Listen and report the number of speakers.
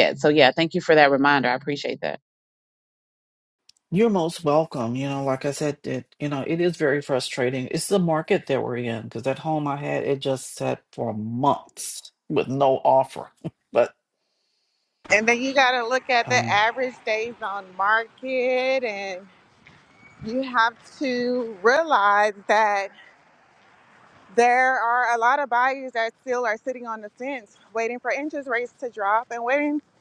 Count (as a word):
three